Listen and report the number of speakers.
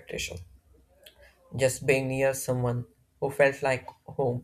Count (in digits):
1